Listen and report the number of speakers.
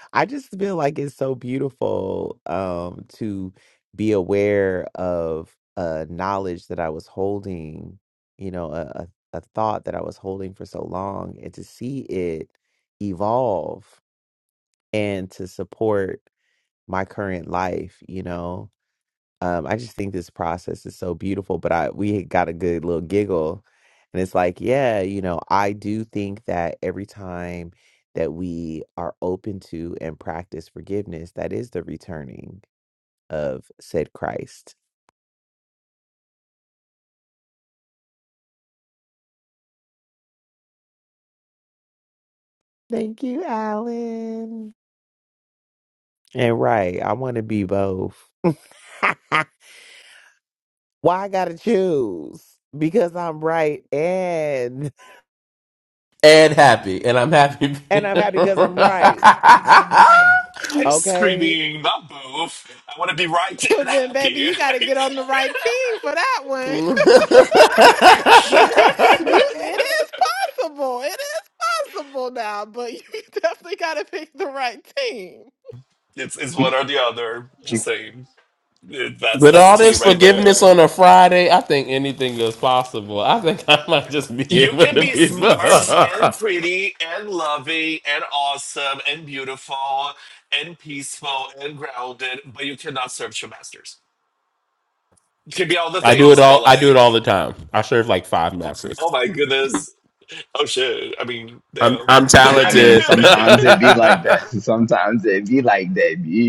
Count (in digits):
5